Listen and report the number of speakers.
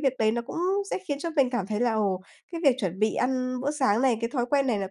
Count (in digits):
1